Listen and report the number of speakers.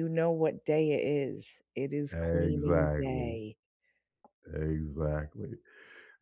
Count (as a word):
two